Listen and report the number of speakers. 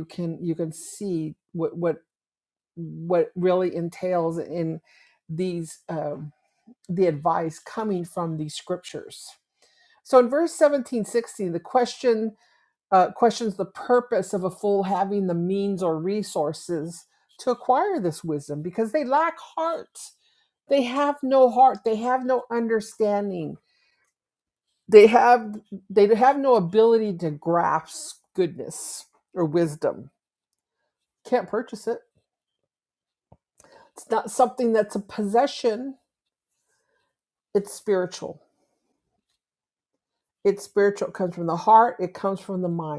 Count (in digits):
1